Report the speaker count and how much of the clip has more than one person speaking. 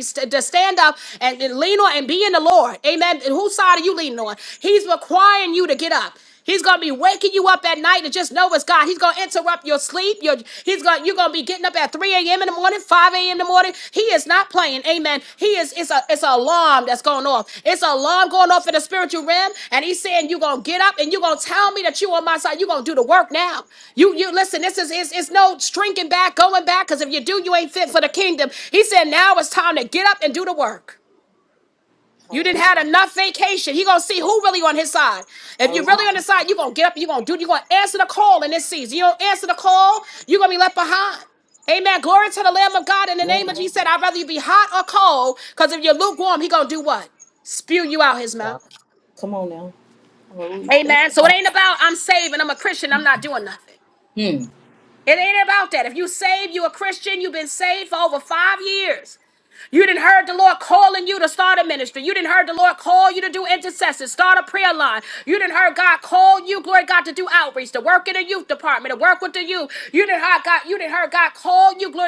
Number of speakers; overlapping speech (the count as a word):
two, about 3%